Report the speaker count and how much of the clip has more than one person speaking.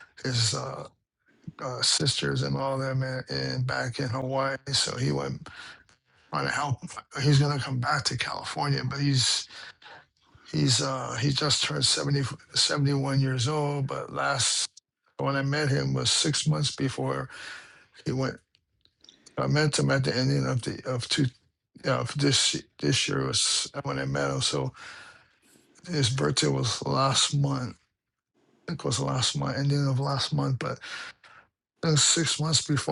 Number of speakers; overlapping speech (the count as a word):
one, no overlap